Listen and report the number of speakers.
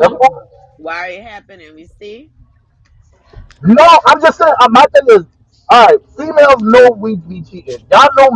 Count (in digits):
2